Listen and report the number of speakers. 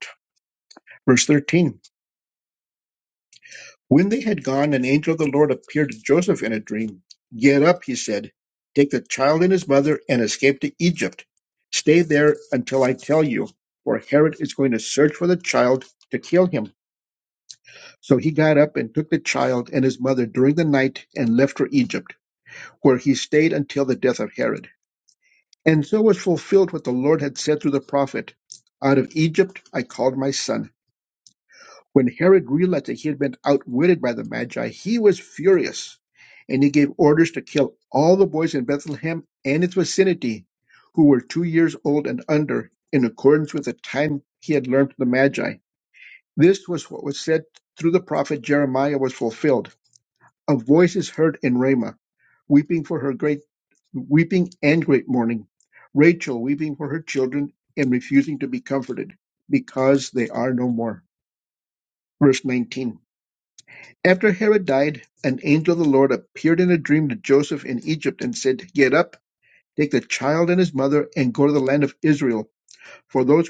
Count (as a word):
one